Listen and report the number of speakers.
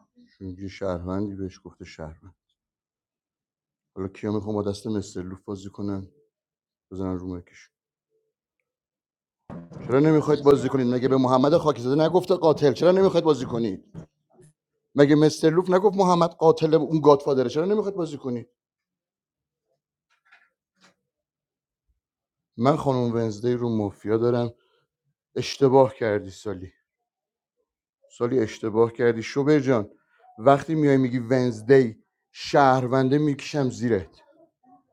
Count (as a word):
one